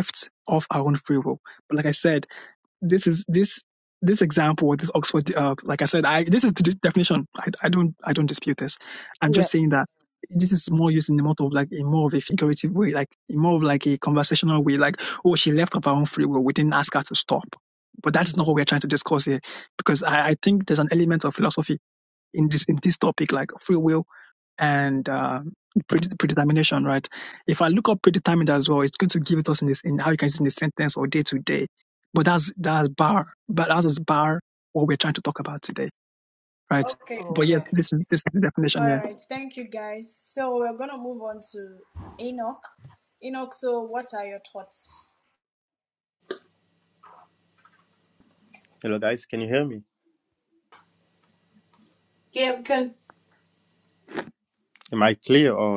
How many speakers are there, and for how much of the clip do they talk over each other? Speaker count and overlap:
4, about 2%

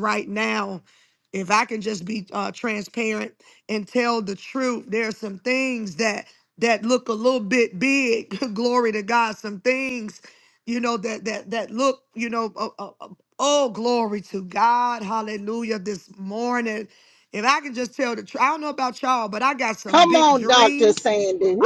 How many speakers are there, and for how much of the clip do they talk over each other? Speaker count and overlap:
2, about 6%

